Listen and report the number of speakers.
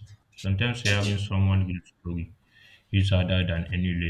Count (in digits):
1